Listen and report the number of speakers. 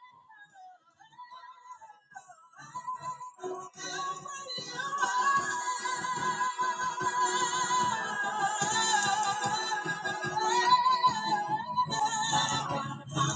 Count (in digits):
0